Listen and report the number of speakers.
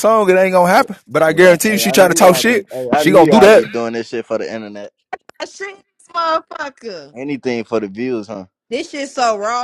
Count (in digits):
3